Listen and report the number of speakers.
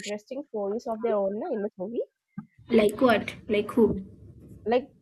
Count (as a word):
two